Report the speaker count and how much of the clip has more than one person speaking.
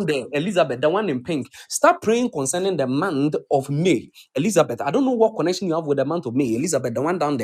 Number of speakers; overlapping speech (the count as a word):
one, no overlap